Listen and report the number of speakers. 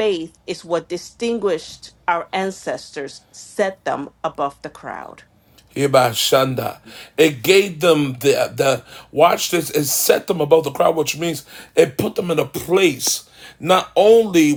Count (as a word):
two